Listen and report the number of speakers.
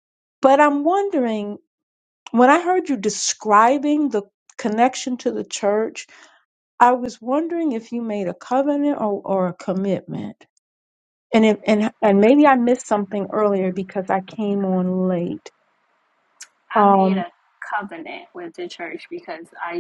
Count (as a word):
two